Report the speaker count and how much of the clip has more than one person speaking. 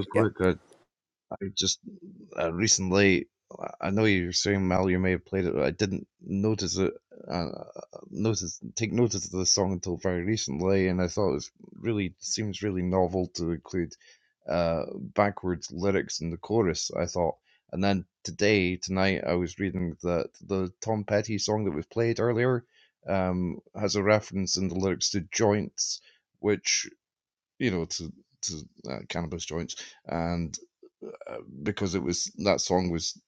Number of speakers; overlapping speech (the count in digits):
1, no overlap